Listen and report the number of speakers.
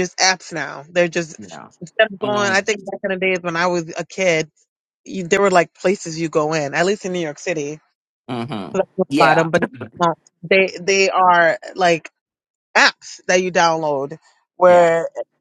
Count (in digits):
2